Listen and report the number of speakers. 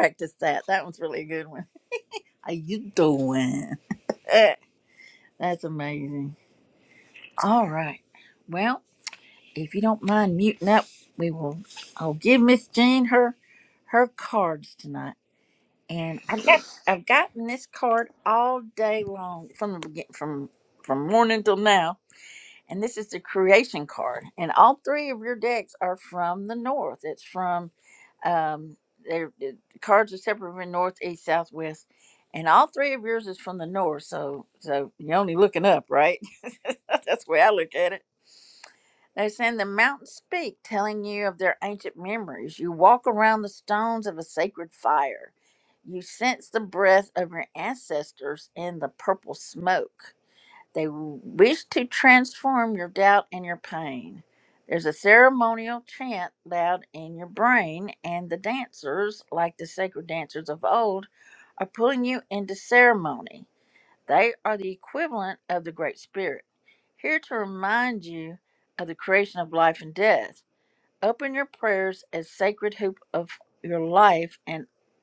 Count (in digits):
1